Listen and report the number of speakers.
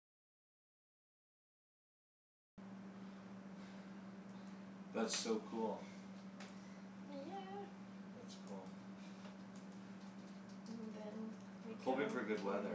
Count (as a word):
two